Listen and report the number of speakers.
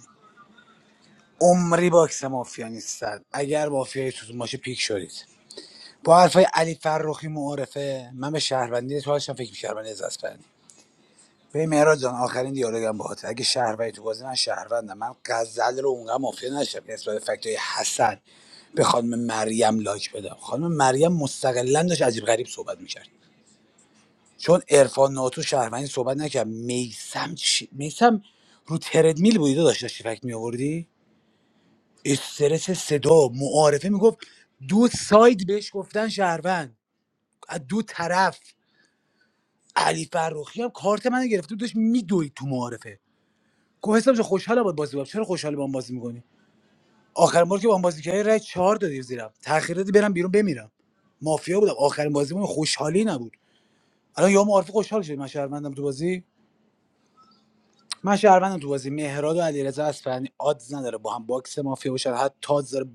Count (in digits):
1